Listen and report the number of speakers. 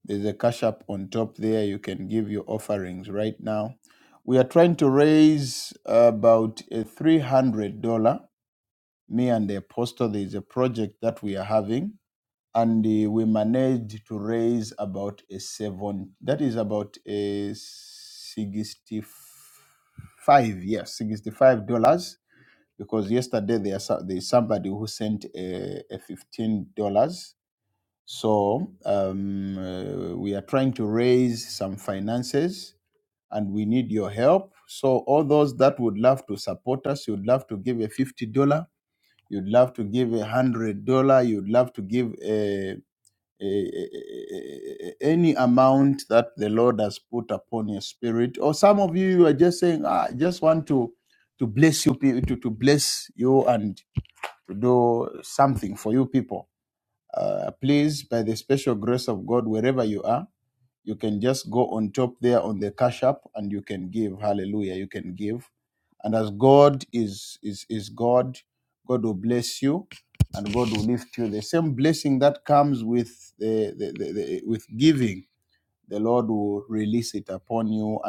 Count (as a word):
one